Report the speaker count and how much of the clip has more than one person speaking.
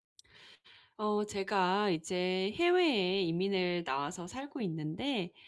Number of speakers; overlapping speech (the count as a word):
one, no overlap